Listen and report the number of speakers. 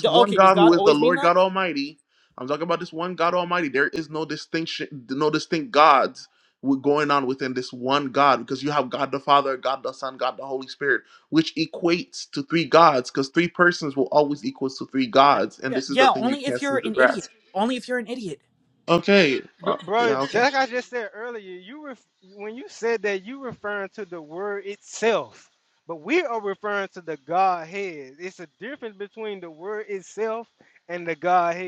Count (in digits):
3